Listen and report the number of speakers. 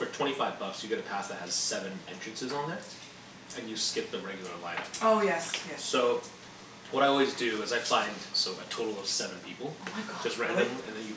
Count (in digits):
2